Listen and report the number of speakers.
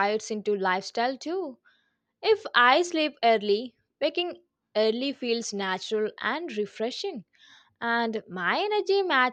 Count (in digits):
1